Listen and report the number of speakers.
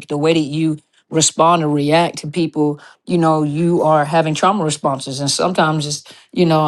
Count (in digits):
1